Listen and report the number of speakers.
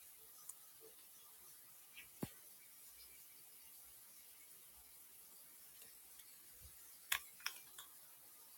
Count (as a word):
zero